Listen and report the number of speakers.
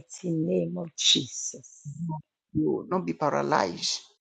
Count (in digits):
2